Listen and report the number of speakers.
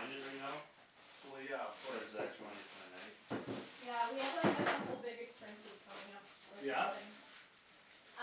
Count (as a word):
three